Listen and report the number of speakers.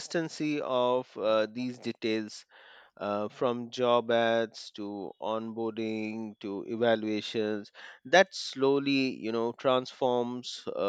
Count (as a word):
one